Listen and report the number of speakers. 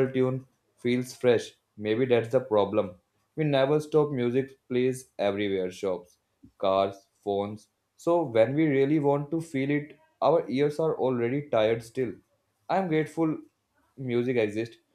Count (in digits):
1